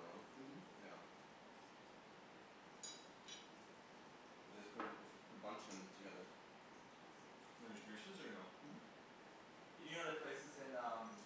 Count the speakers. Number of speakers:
three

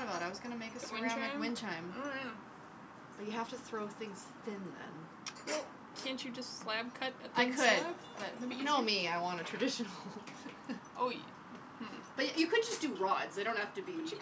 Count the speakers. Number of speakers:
two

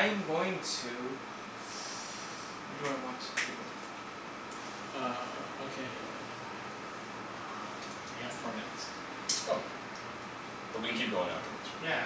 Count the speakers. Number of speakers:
three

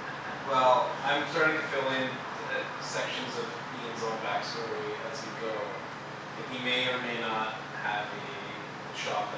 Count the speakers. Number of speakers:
one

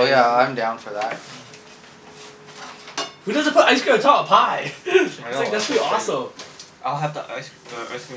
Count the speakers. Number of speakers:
three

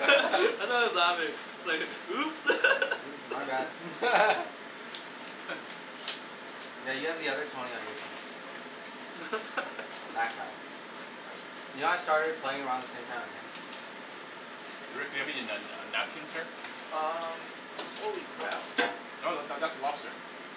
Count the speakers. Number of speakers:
four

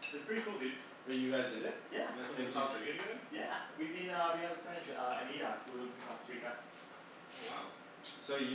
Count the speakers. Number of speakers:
three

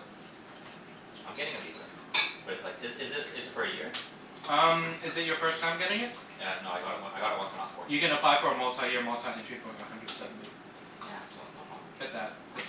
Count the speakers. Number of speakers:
two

